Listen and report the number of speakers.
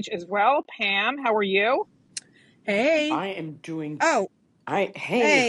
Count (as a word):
three